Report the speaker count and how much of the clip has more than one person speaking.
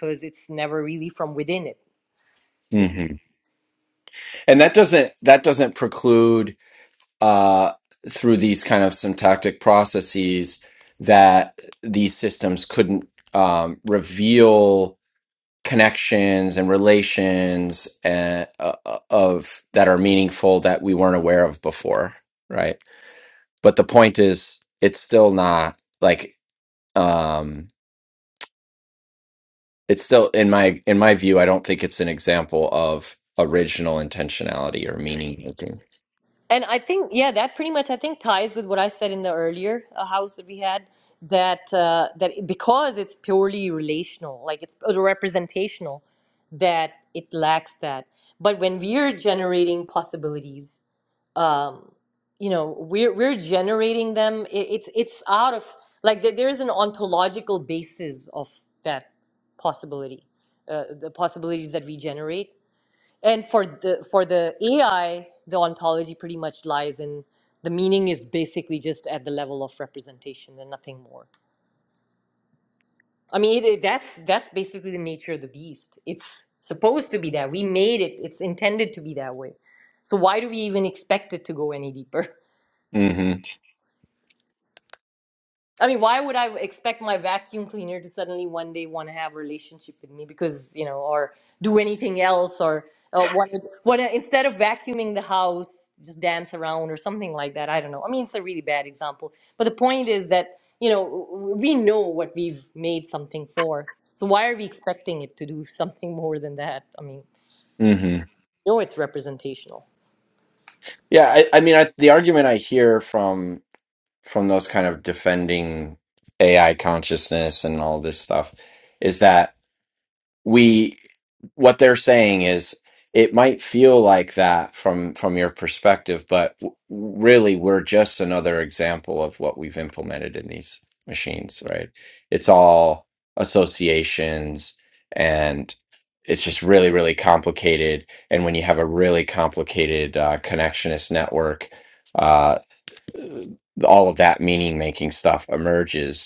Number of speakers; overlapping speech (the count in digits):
2, under 1%